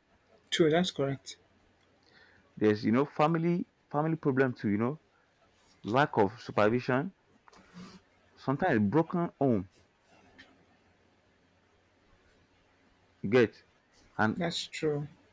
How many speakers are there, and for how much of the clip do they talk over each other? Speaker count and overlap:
two, no overlap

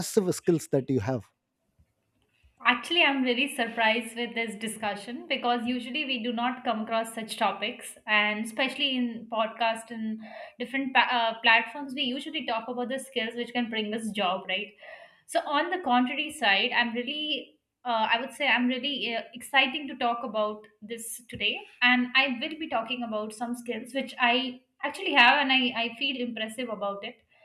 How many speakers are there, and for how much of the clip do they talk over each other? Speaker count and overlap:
two, no overlap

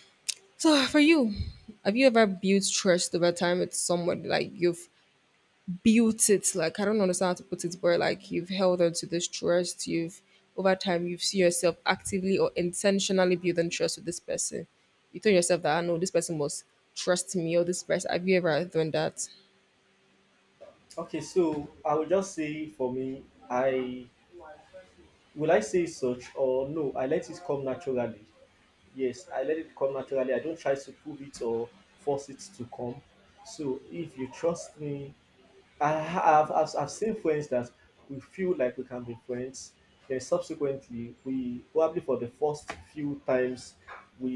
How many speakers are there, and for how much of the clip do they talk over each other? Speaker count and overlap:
two, no overlap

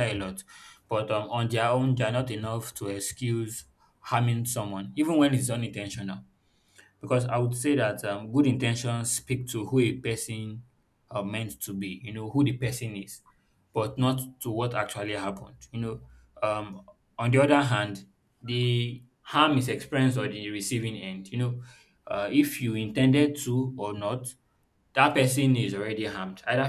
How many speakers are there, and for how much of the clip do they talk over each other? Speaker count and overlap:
one, no overlap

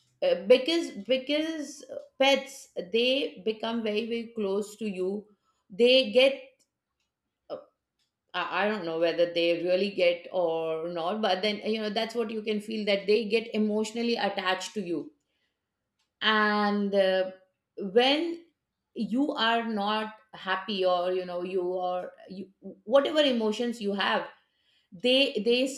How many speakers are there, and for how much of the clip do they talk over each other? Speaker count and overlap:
one, no overlap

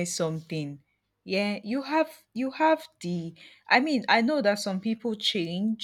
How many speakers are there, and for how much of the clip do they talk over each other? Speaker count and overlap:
one, no overlap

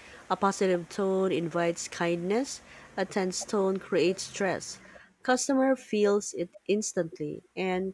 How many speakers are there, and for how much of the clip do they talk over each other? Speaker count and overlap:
one, no overlap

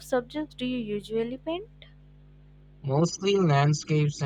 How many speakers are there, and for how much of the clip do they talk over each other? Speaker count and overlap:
two, no overlap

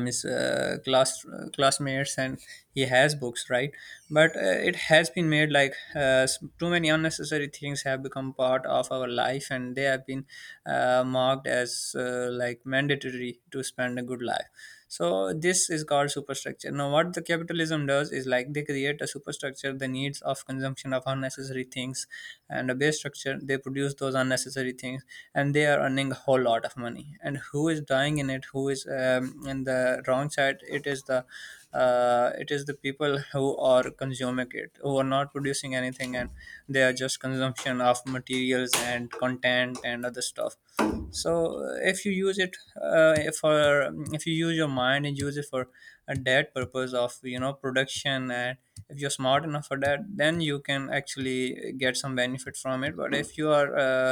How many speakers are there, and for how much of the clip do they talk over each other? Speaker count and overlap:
one, no overlap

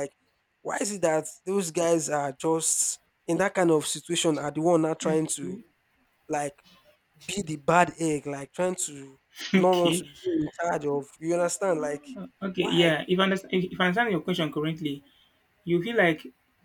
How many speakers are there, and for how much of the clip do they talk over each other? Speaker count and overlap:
two, about 9%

